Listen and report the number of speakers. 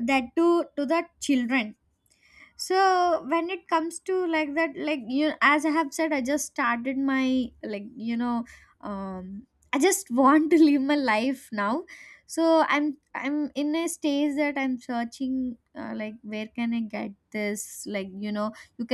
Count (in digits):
1